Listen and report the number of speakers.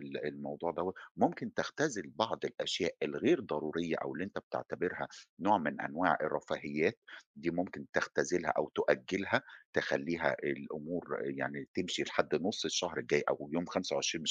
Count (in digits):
1